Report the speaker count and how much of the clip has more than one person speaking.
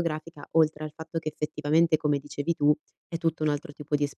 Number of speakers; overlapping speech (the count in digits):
1, no overlap